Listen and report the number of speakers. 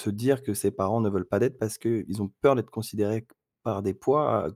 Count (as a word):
one